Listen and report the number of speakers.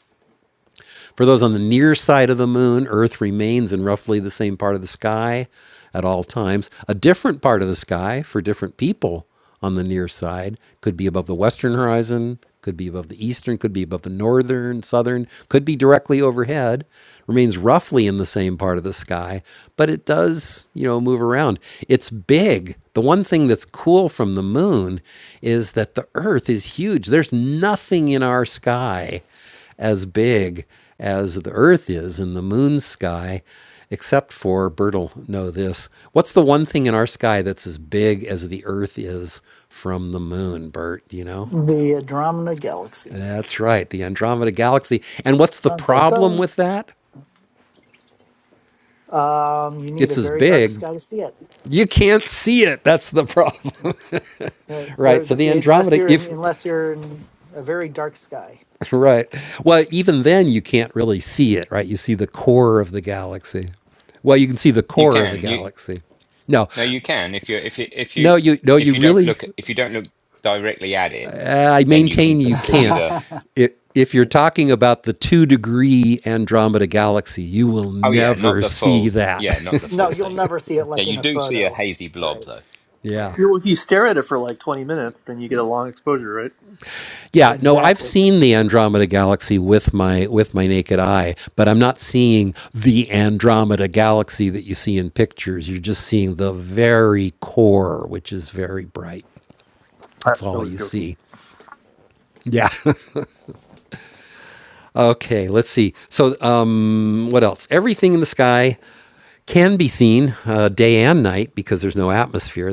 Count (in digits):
4